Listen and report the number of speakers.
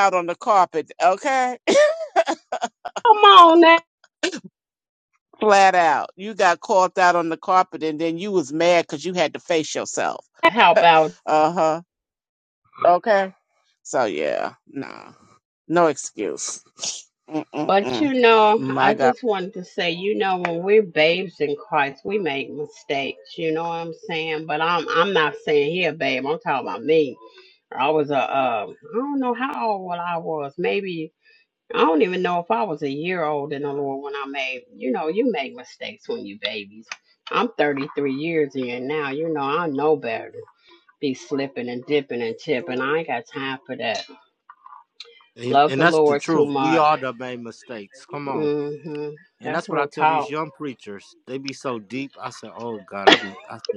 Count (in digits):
3